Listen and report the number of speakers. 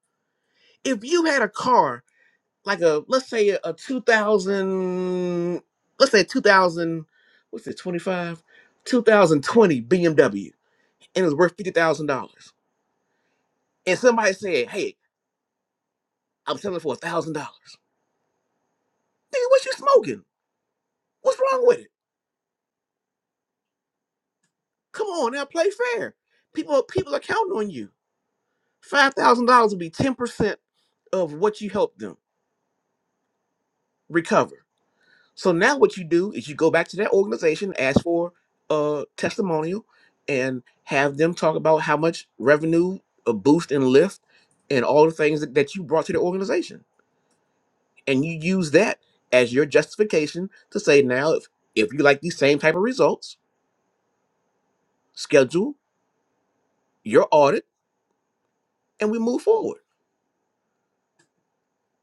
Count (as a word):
one